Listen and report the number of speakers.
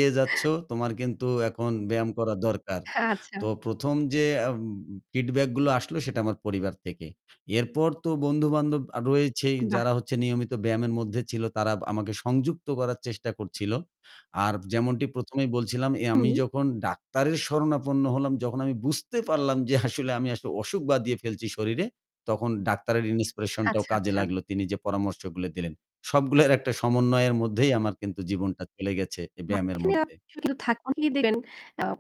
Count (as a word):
two